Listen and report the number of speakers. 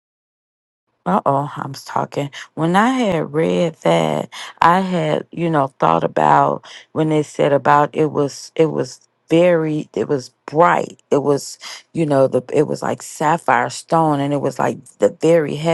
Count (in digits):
1